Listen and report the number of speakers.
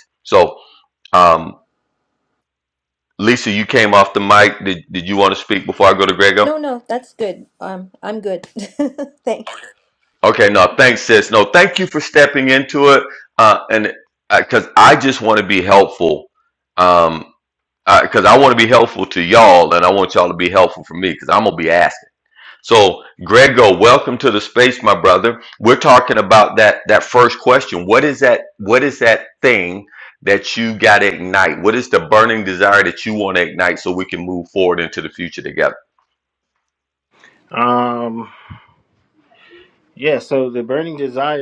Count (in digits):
3